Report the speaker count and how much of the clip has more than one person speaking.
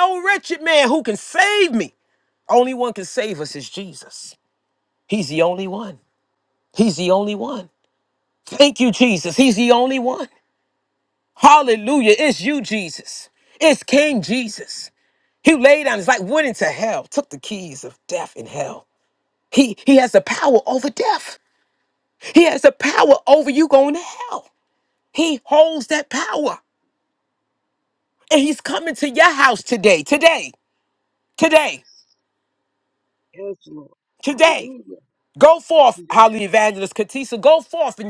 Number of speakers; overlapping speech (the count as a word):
two, about 1%